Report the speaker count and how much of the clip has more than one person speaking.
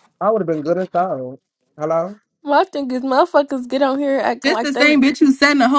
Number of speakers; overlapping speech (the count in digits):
3, about 9%